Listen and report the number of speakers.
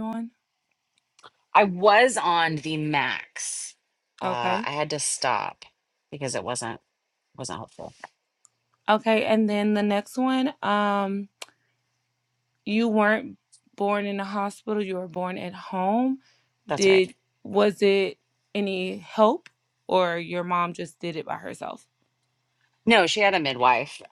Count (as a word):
two